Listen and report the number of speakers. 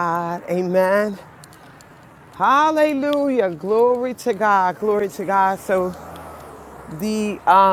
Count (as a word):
one